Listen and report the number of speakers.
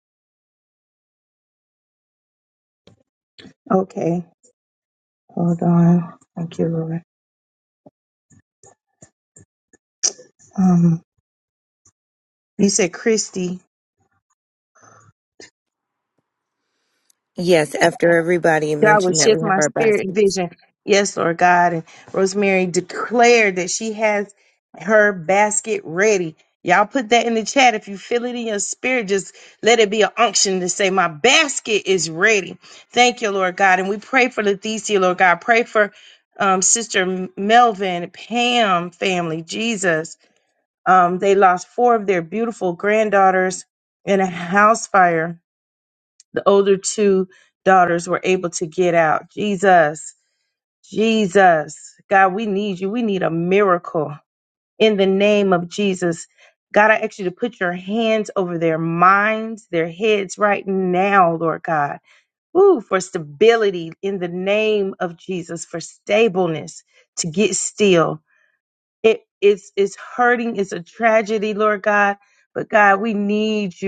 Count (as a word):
two